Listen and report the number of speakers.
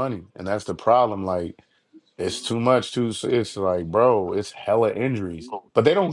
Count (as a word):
one